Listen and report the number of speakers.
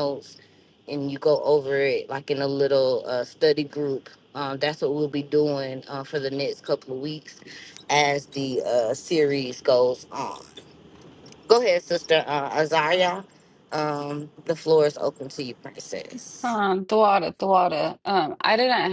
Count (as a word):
two